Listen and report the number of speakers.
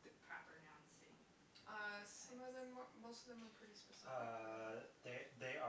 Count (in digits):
3